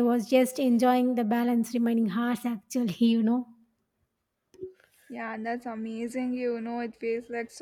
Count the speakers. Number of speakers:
2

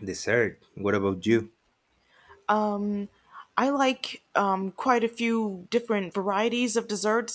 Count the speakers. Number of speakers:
2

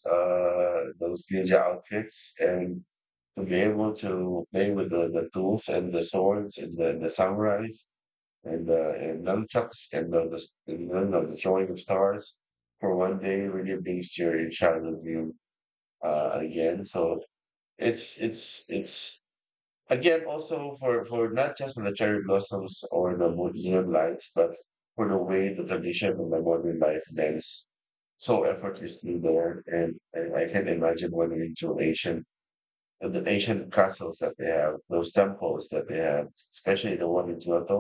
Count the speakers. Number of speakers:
1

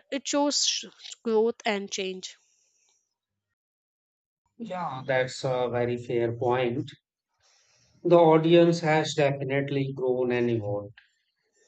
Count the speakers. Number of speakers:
2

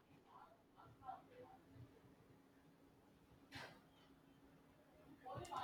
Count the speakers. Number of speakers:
0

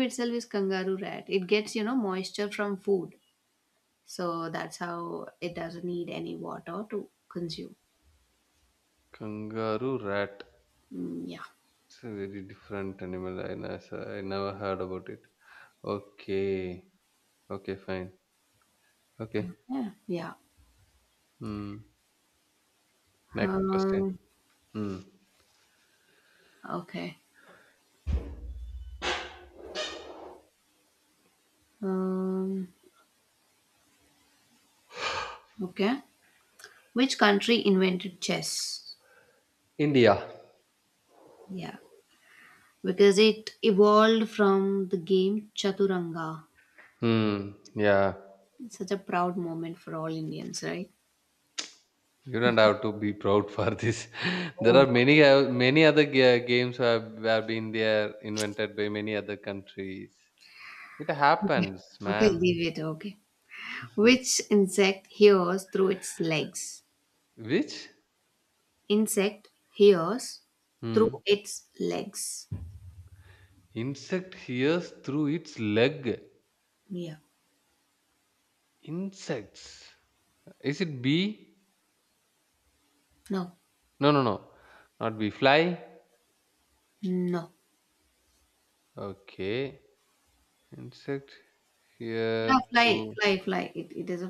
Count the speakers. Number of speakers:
2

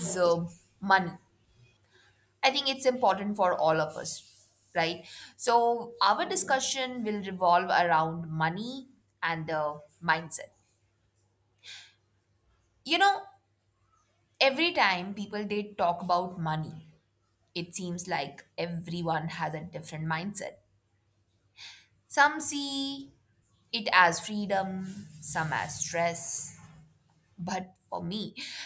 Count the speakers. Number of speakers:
1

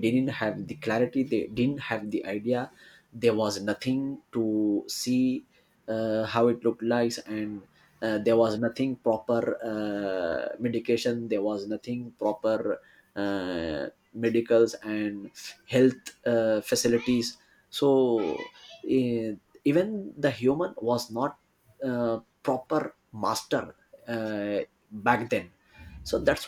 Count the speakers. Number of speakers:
1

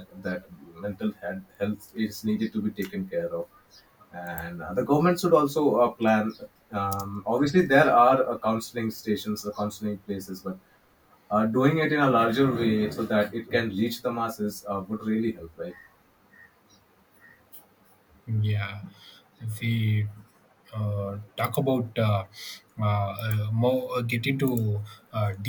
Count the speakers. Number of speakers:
2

